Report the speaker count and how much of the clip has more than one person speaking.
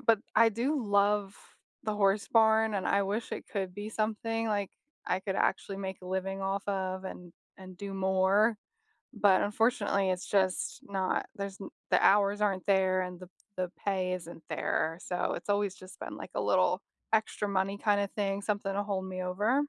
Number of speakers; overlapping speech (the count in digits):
1, no overlap